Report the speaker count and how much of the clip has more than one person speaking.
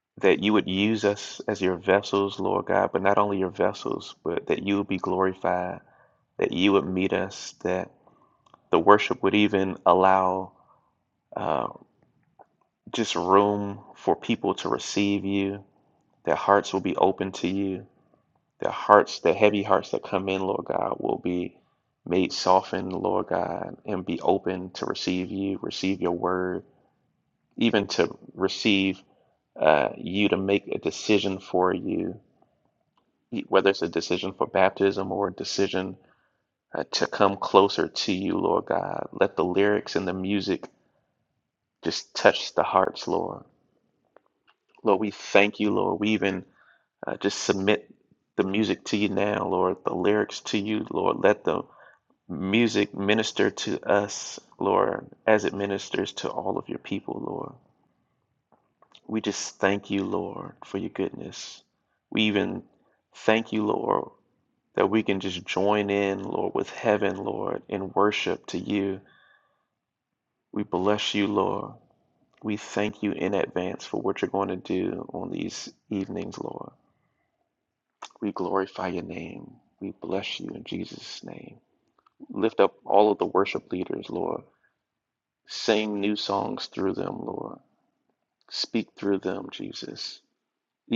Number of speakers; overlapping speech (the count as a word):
one, no overlap